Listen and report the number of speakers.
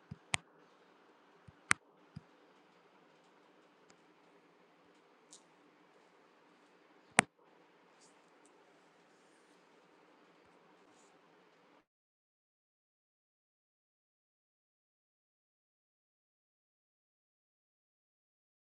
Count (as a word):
zero